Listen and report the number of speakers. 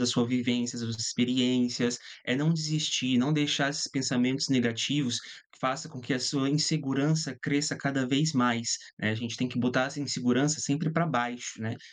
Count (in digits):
1